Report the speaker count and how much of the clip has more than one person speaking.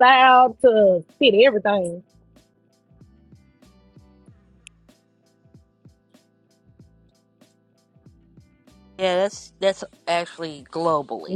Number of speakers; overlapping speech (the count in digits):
2, about 1%